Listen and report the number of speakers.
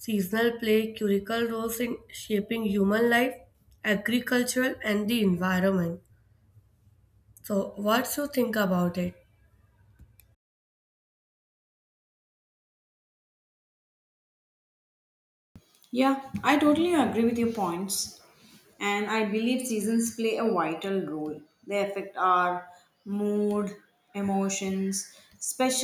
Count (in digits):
2